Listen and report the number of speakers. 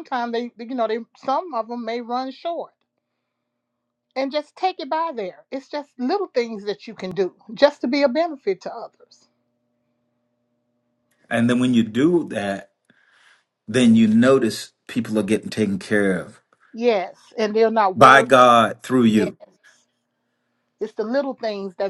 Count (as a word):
two